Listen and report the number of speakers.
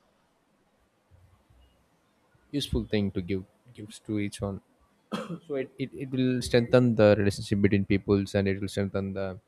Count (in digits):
1